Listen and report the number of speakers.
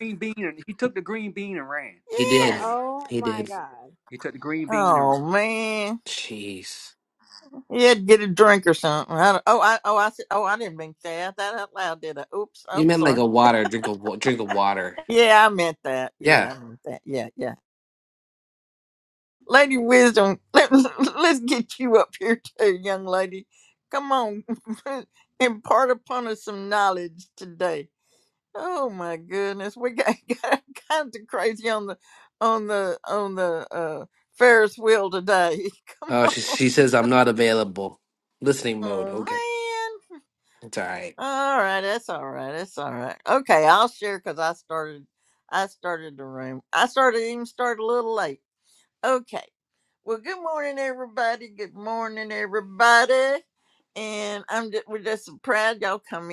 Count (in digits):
4